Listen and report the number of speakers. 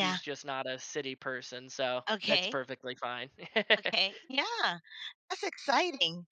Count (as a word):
two